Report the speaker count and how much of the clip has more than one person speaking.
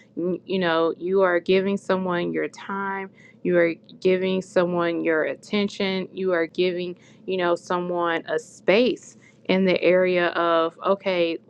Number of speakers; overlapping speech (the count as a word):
one, no overlap